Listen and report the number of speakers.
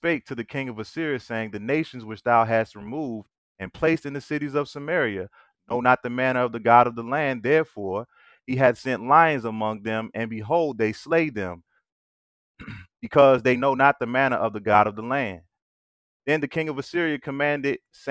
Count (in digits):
1